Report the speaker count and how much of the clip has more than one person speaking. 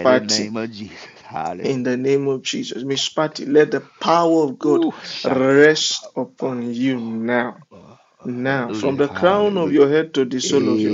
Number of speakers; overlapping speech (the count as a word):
two, about 35%